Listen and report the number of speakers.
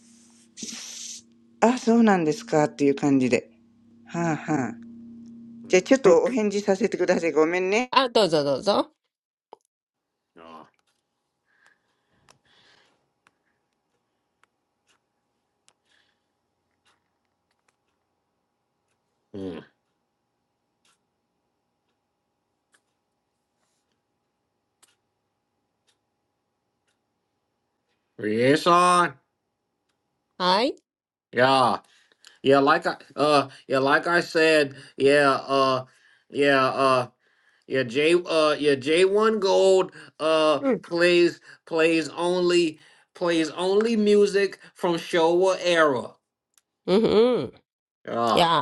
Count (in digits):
3